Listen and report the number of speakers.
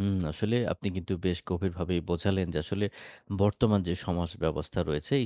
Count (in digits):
1